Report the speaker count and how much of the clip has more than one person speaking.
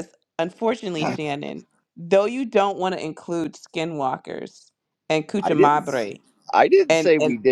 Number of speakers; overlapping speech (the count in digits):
2, about 12%